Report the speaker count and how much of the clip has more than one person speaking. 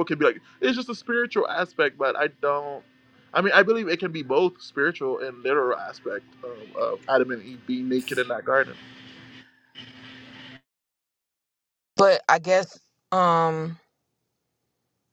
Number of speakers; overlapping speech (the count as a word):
two, no overlap